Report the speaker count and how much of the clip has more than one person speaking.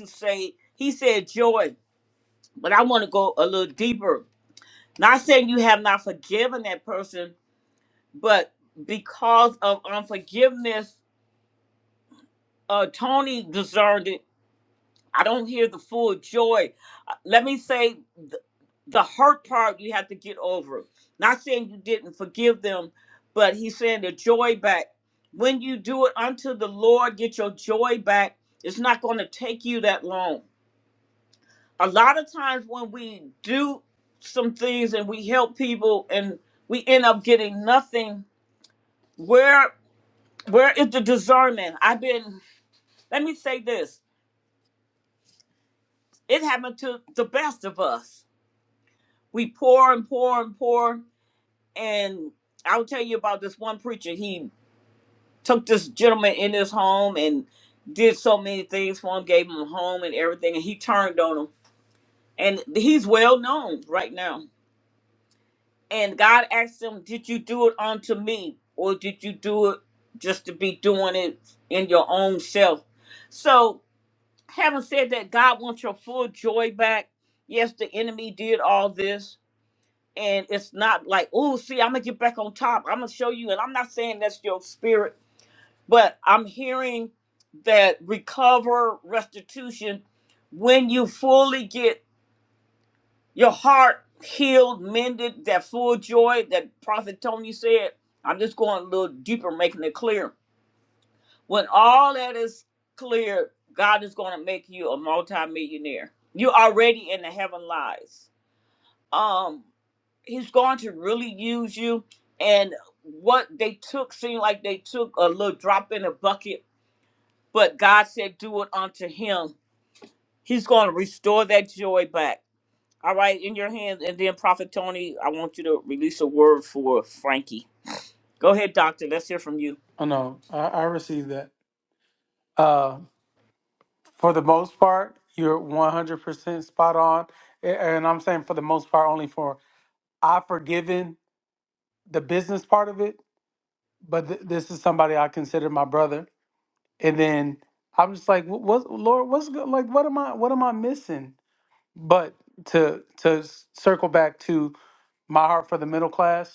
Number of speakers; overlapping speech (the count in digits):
2, no overlap